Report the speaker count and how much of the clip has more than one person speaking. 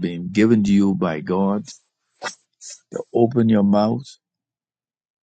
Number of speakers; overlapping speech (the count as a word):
one, no overlap